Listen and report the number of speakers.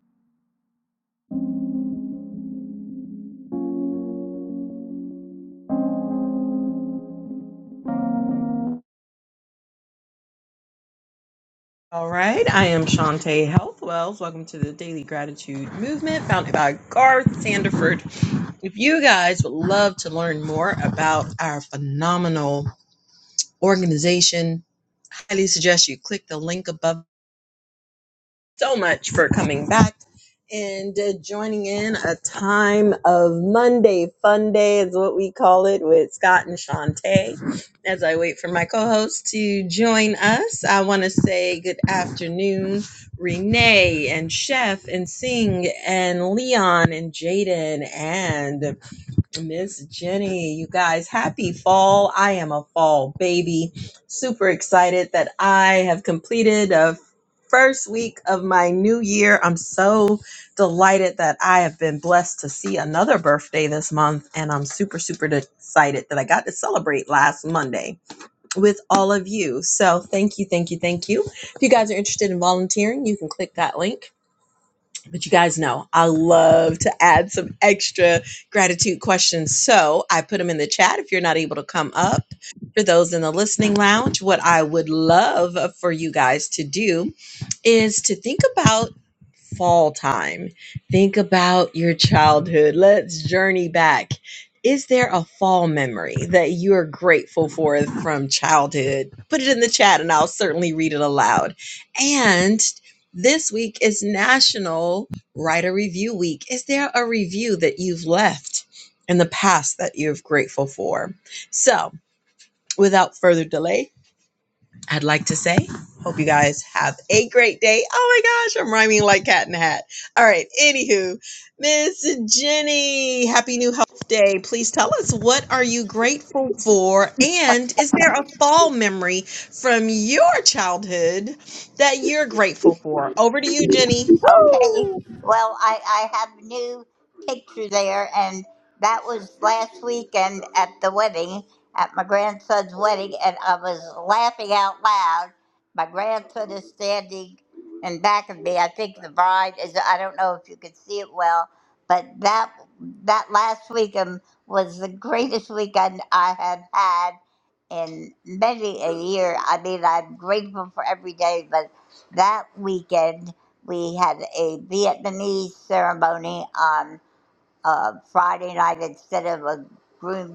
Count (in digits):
2